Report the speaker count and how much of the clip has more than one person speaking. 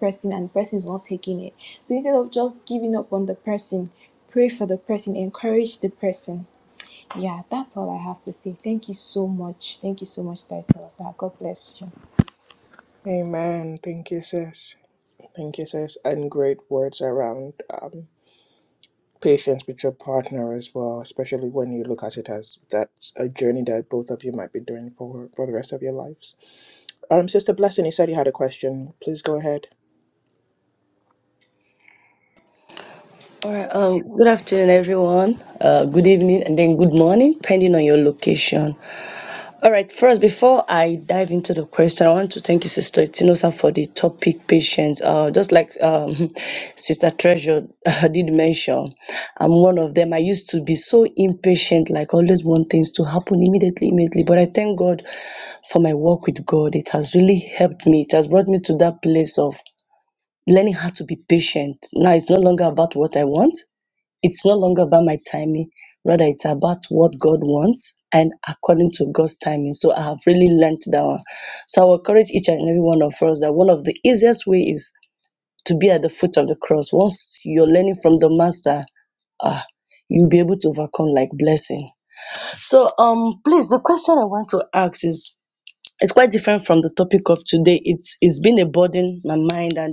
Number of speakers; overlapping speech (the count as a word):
three, no overlap